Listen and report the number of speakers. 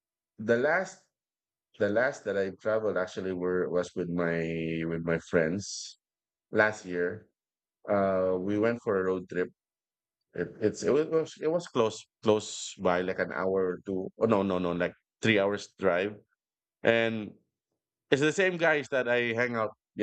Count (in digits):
1